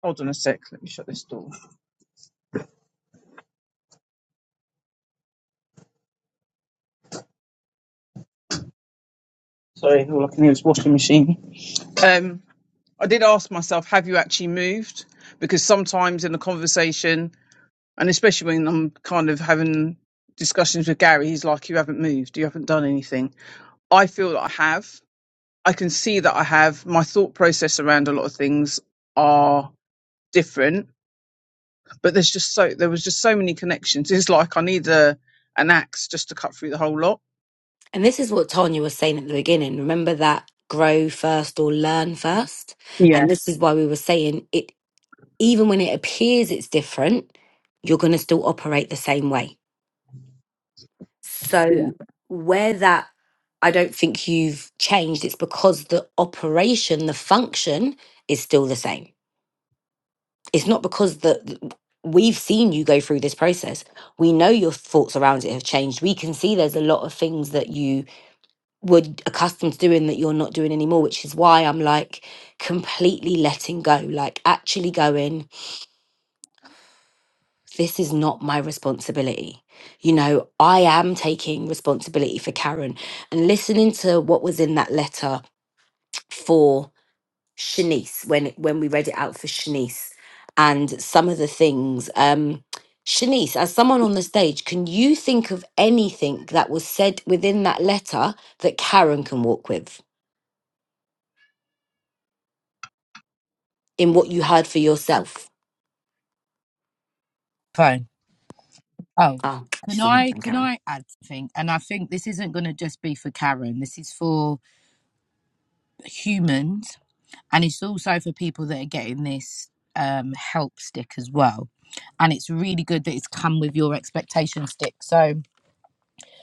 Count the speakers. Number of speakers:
three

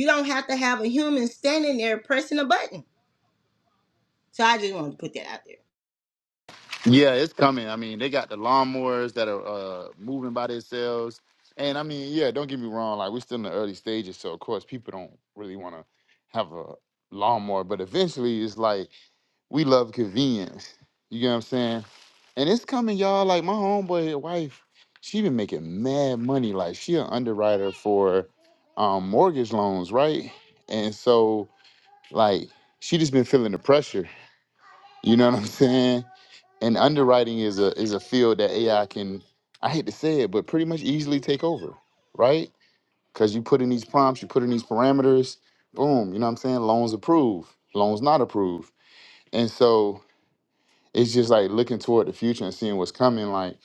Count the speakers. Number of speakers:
two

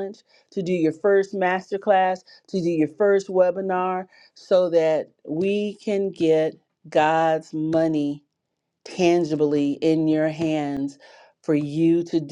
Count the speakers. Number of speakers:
one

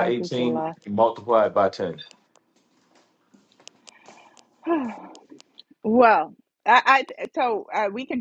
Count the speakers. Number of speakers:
two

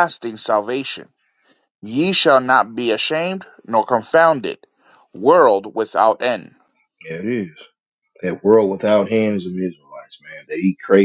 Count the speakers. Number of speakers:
two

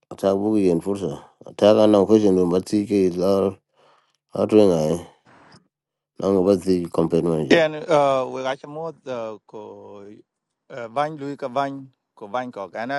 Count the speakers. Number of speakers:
two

